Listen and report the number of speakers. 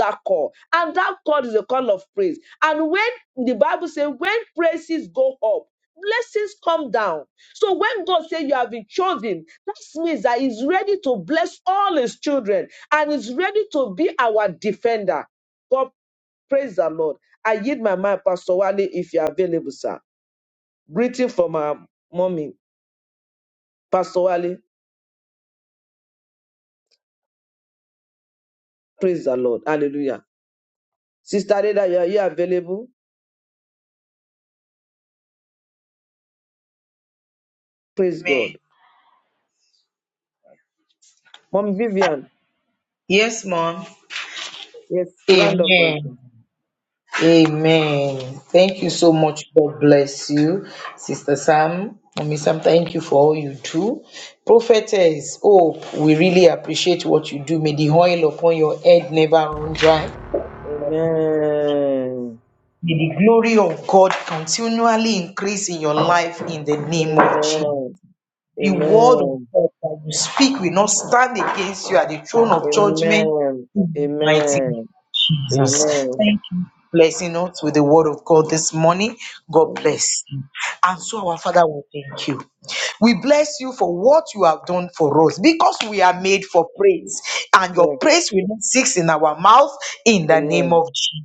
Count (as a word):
two